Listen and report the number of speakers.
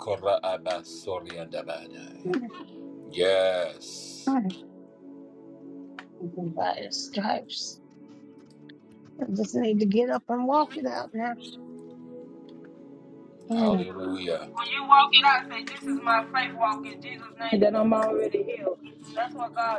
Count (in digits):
3